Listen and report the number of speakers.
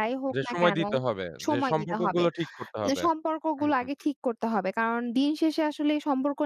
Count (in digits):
2